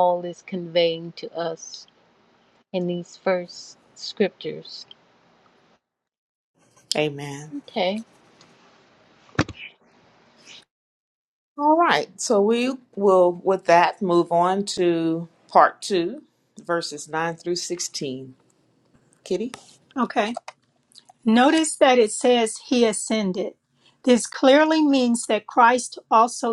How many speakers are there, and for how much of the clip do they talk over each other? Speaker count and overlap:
3, no overlap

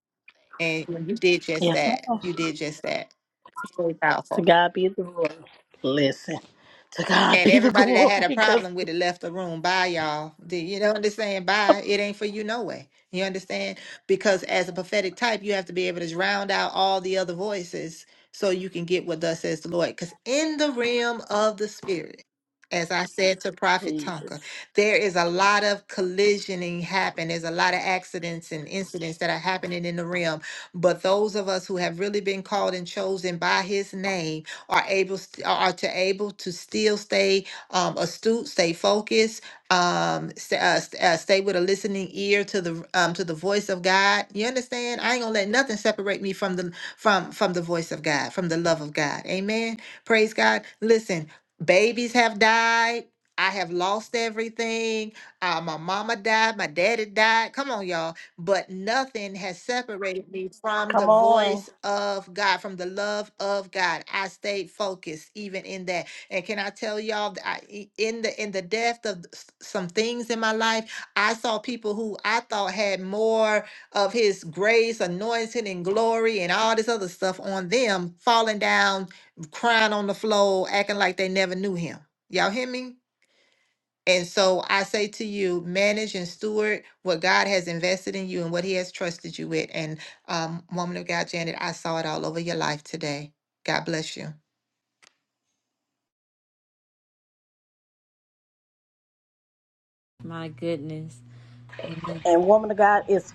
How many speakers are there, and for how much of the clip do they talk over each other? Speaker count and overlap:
3, about 3%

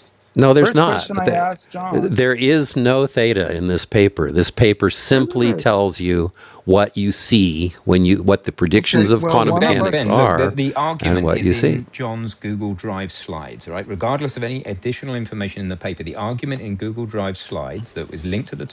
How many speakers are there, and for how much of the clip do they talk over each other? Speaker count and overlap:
3, about 21%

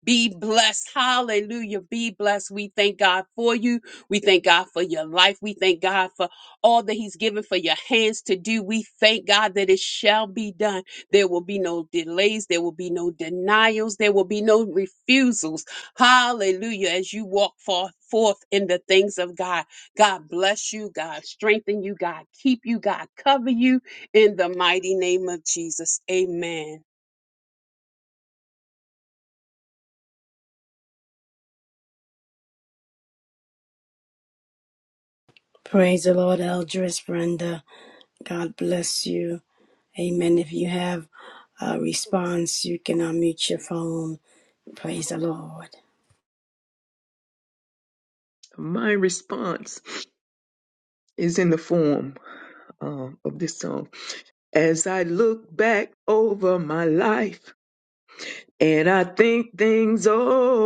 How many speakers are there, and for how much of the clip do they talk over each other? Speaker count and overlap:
3, no overlap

